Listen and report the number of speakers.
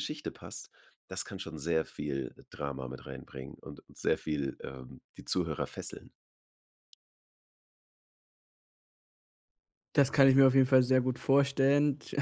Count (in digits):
2